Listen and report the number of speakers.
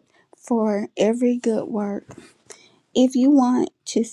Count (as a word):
one